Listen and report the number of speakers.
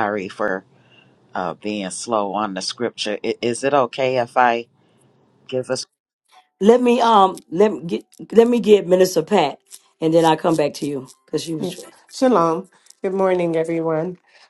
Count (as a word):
three